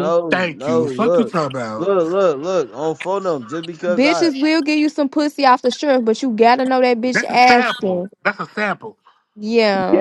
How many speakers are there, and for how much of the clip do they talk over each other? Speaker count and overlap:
3, about 31%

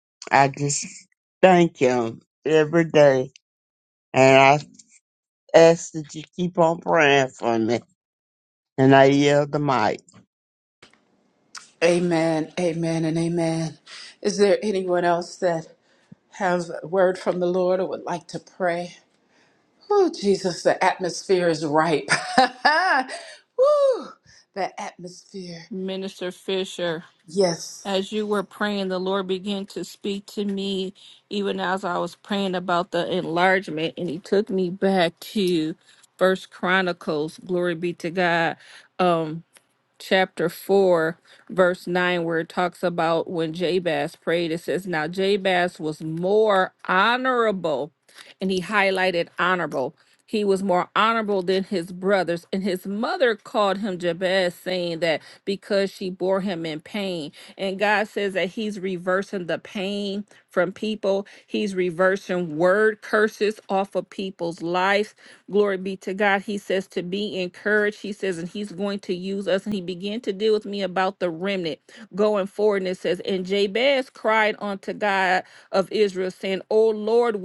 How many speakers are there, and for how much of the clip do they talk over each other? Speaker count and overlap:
3, no overlap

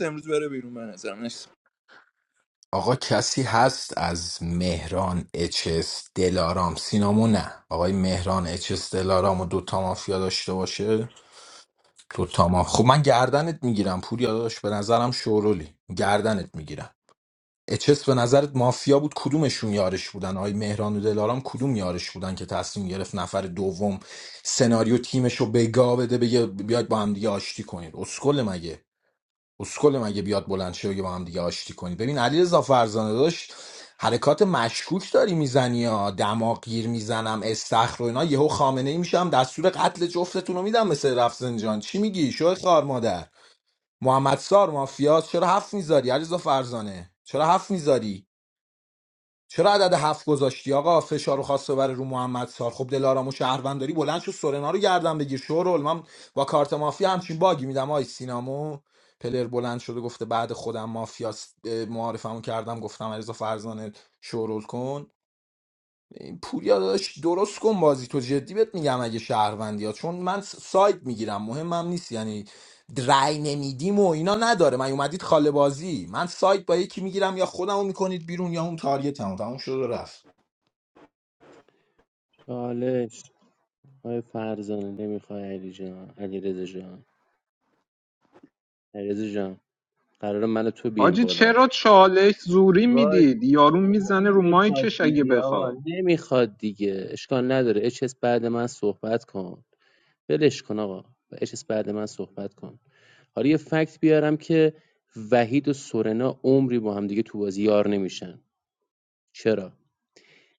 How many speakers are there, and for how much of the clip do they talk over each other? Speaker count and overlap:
4, about 2%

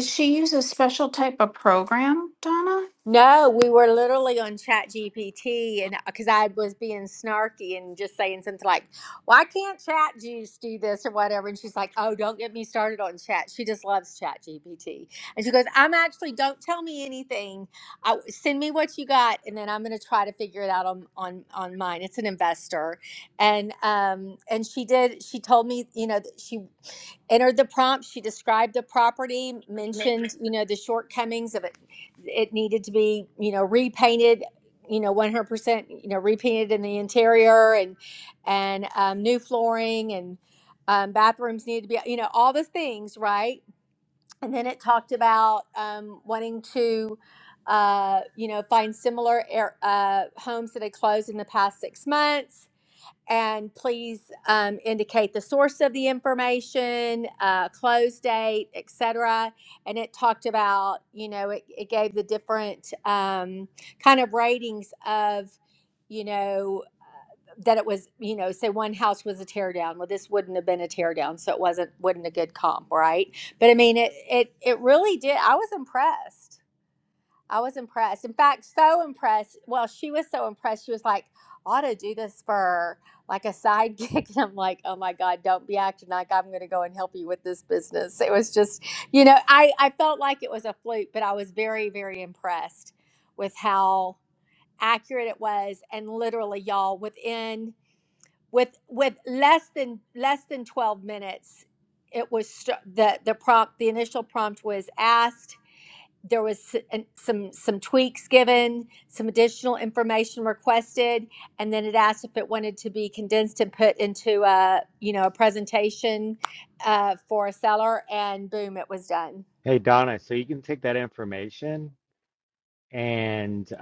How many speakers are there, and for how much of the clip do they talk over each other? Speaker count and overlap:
3, no overlap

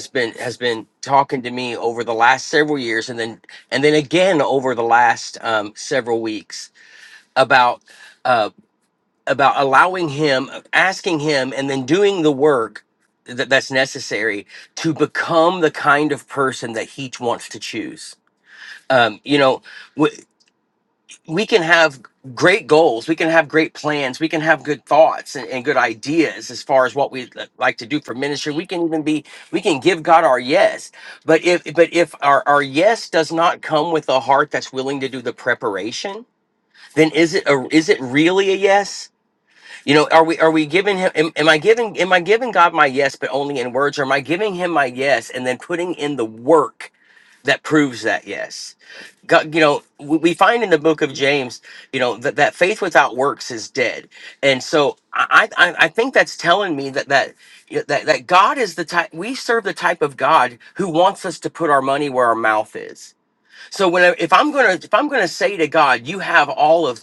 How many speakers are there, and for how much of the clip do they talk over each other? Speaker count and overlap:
1, no overlap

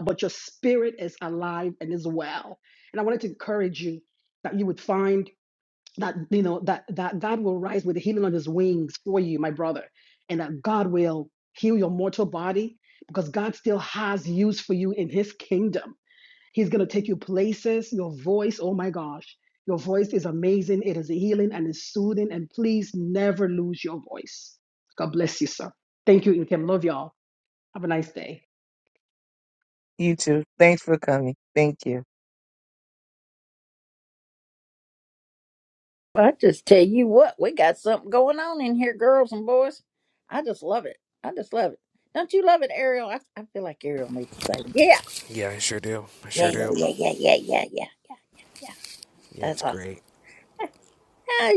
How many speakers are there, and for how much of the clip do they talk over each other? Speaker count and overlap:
4, about 2%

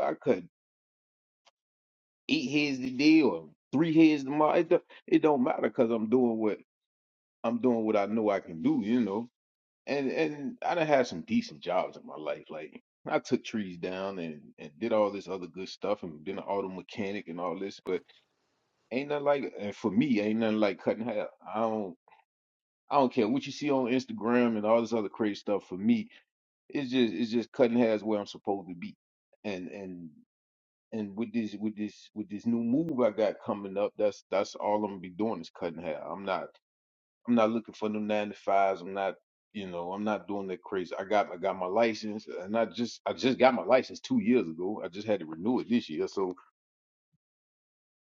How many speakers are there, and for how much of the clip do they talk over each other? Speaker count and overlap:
1, no overlap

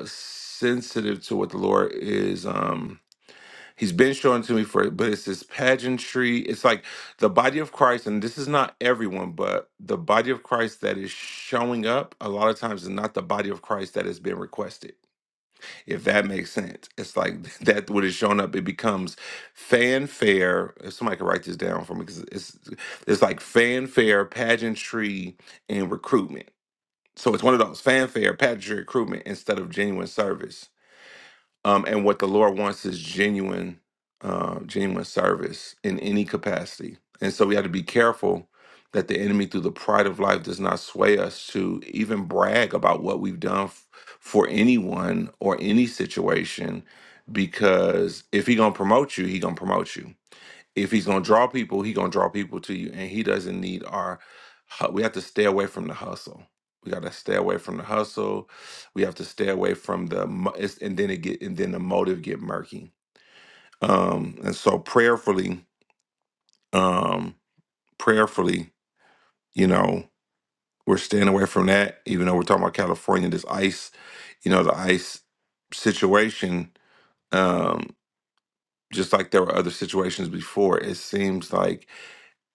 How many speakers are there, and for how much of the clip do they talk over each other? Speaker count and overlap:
1, no overlap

